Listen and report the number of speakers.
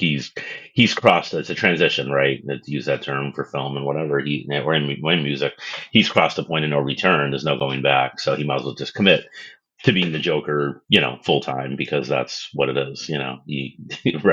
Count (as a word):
one